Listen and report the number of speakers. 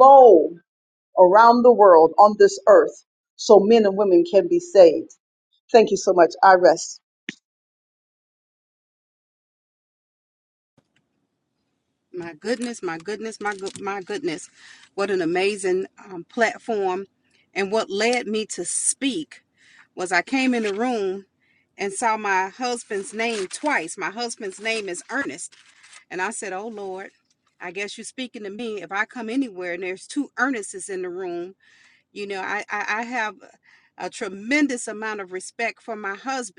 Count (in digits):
2